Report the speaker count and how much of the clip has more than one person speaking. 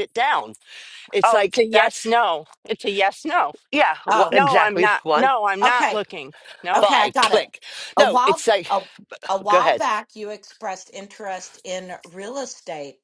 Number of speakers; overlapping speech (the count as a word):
three, about 33%